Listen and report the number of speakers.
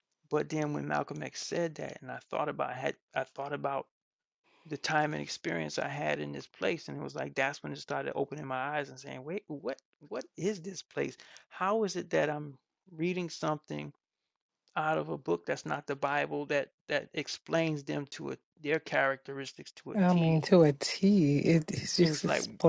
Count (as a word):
two